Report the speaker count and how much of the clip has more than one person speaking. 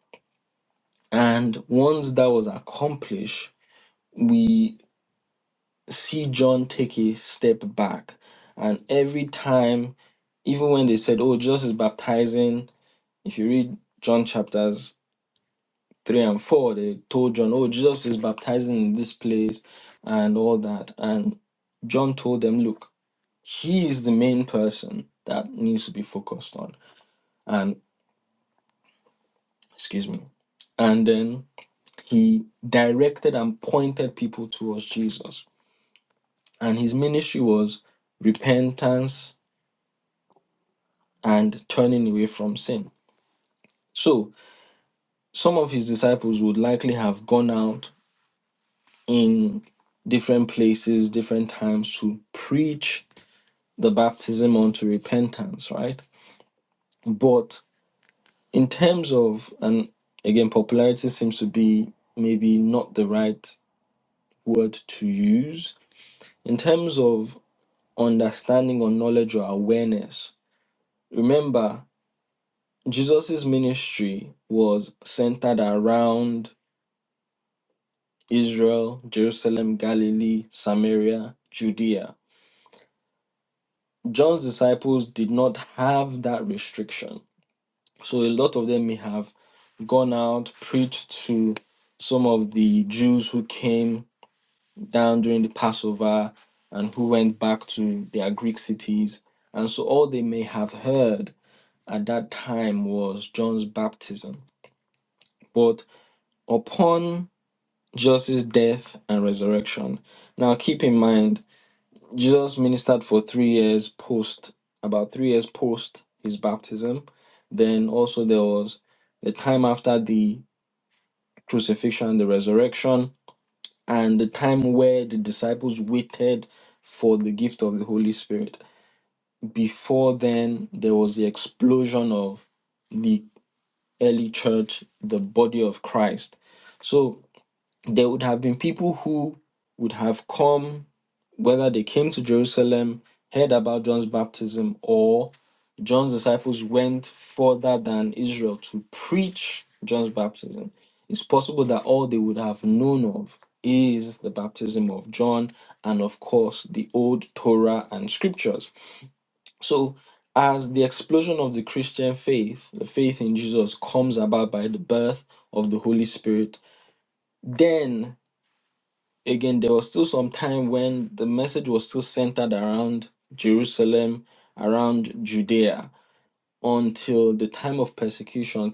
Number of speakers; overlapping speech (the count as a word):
one, no overlap